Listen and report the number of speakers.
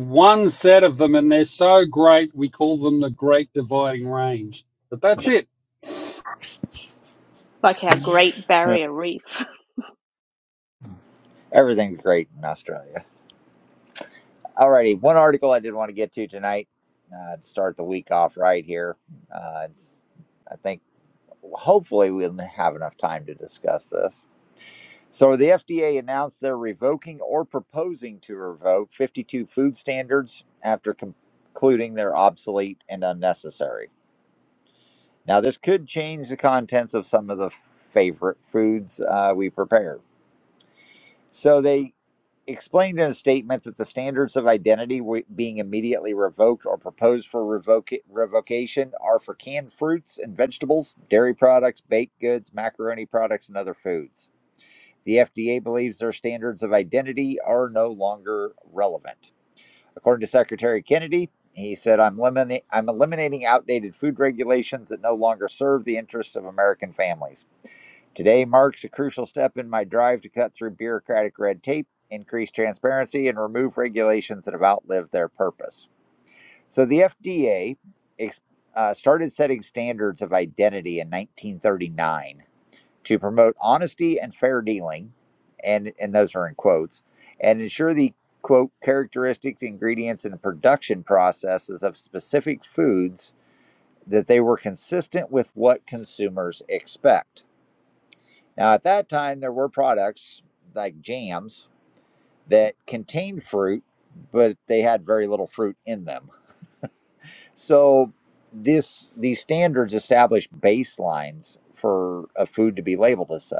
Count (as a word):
three